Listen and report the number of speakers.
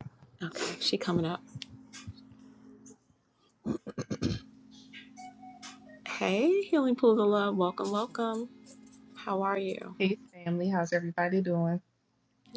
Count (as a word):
two